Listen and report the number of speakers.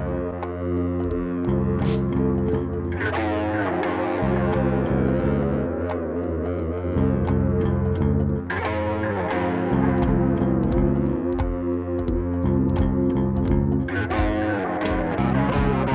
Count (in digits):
0